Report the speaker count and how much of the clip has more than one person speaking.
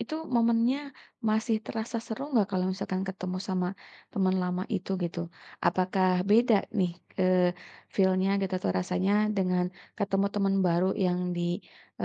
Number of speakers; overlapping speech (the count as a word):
one, no overlap